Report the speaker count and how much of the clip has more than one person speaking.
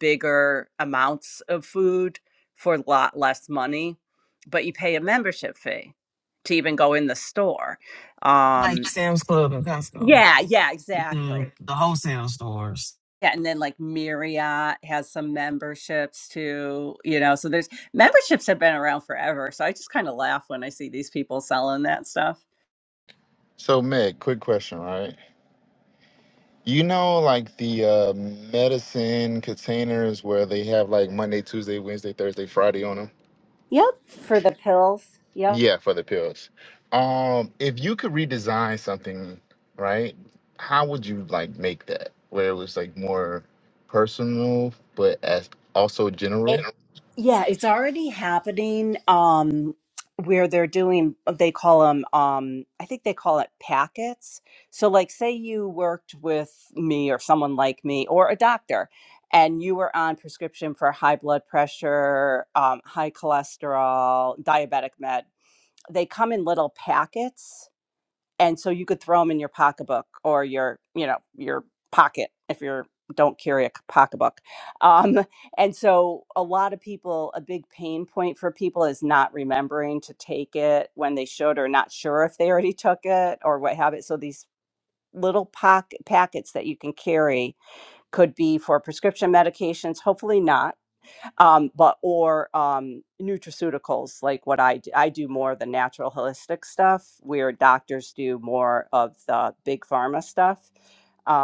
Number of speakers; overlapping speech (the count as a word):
three, about 1%